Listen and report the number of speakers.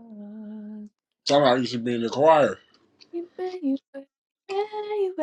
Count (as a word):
two